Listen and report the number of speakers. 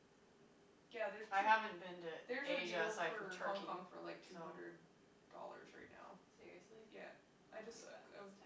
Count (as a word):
three